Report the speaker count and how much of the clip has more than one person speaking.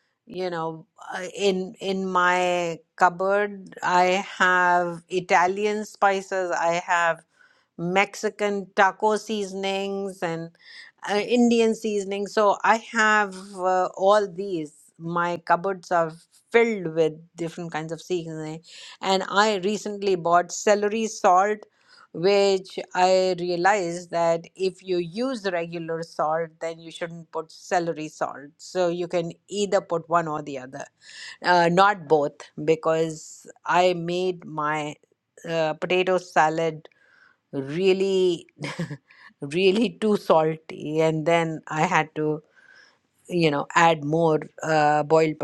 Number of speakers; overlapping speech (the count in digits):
1, no overlap